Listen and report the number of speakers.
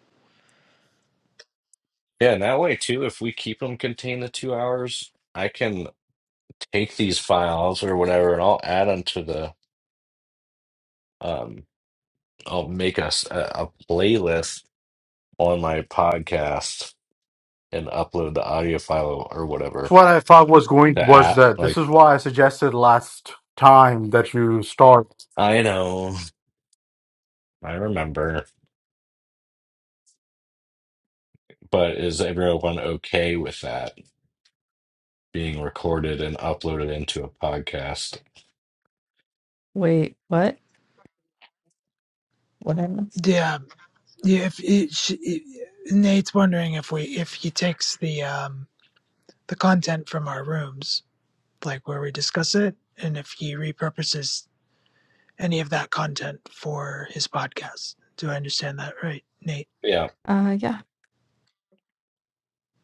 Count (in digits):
4